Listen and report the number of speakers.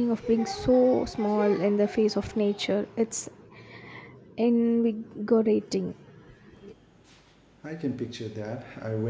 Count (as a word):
two